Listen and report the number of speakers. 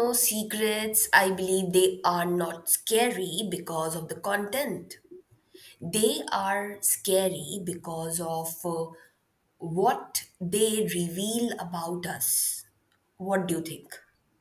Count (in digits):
1